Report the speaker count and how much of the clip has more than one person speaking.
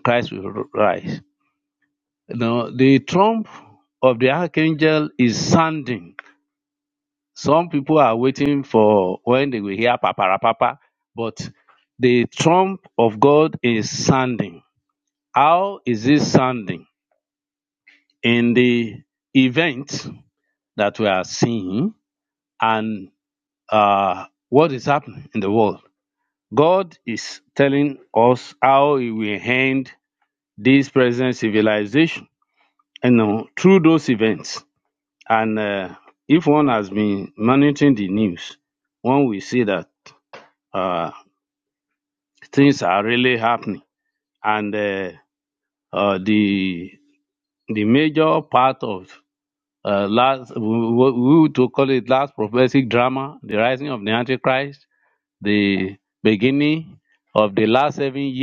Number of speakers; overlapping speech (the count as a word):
one, no overlap